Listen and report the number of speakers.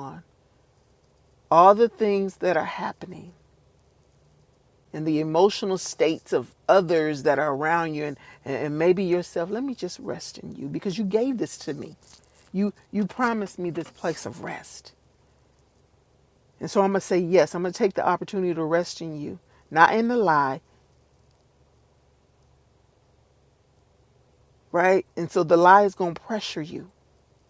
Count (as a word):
one